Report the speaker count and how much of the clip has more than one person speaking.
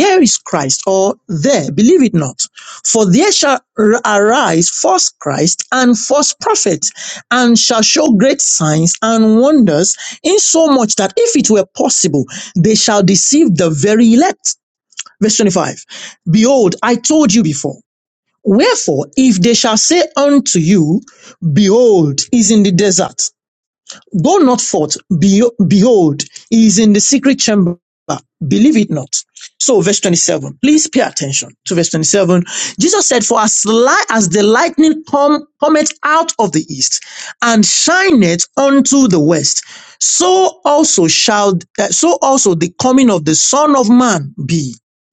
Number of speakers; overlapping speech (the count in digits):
1, no overlap